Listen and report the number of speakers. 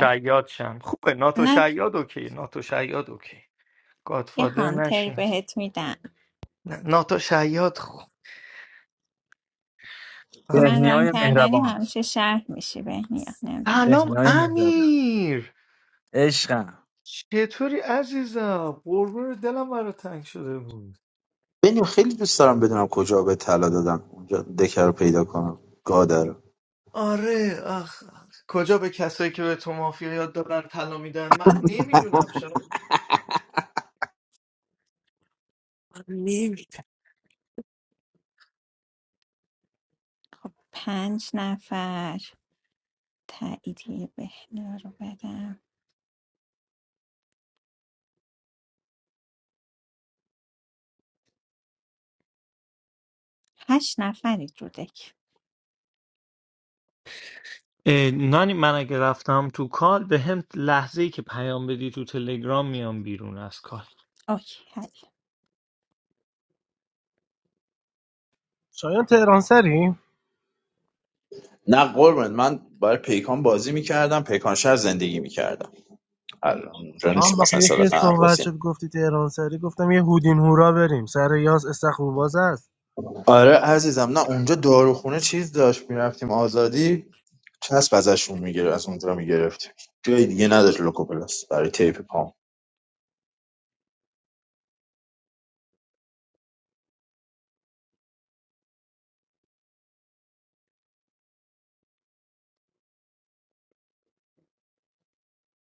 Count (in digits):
5